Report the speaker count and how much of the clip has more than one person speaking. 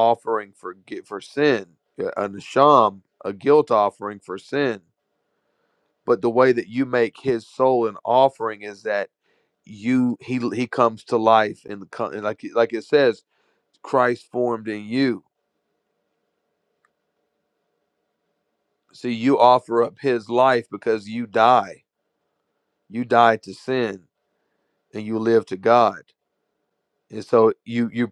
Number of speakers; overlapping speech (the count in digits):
1, no overlap